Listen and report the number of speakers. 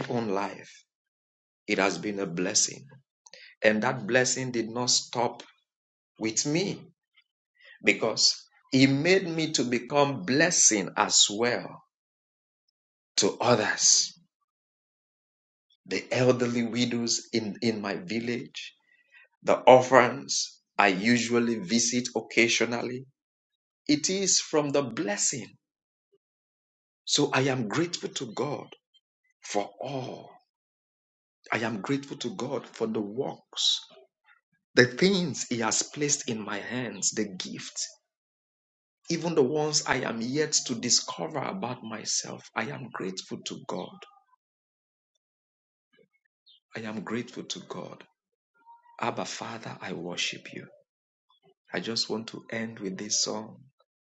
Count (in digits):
1